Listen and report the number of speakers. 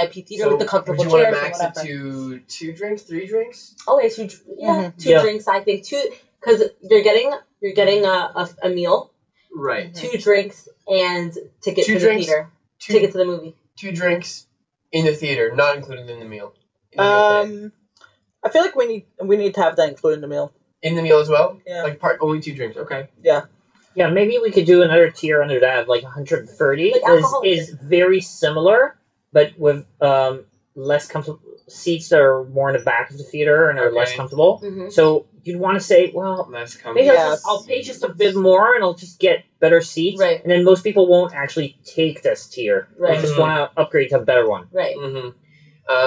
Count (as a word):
four